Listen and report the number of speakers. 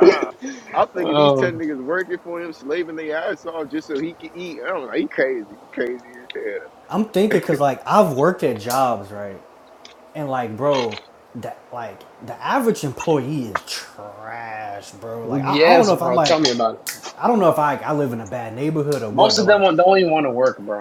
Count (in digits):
3